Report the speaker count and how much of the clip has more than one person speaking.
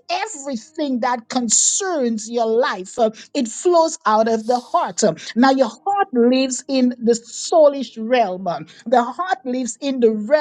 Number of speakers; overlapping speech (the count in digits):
1, no overlap